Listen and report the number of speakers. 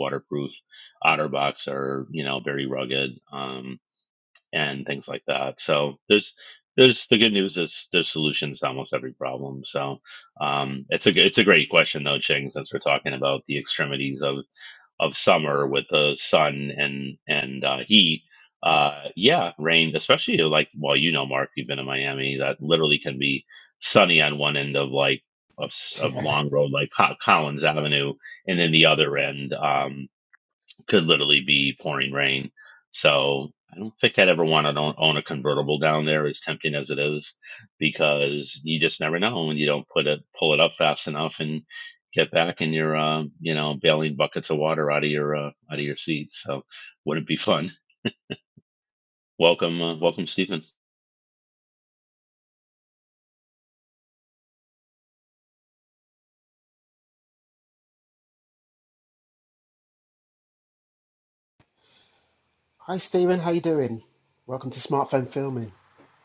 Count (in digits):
2